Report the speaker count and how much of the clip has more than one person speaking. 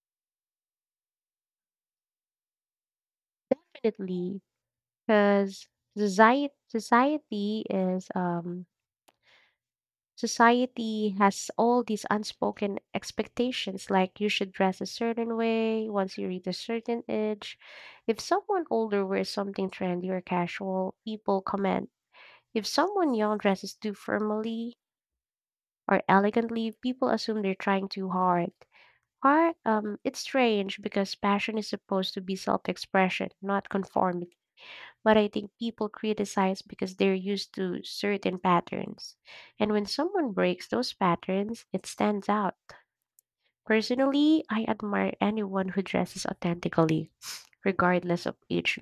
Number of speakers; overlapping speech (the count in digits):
1, no overlap